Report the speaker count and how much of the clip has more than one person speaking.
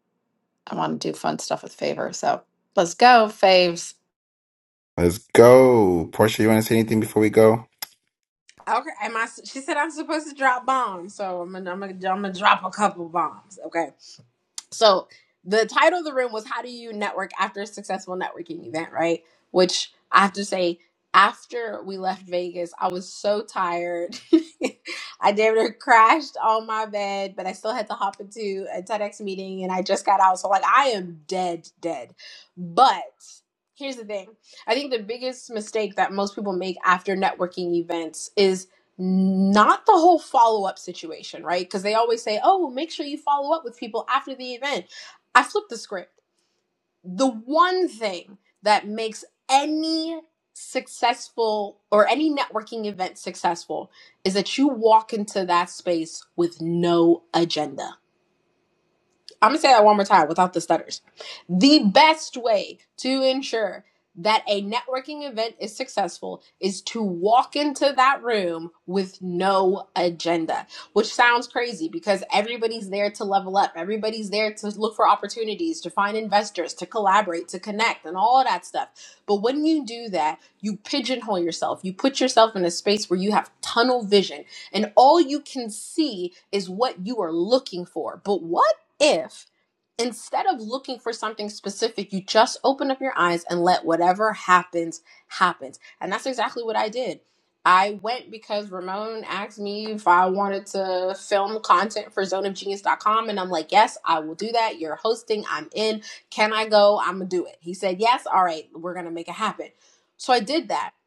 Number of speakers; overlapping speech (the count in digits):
3, no overlap